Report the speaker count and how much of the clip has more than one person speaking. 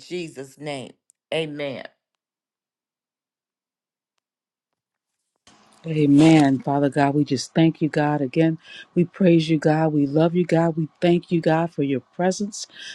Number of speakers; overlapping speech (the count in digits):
2, no overlap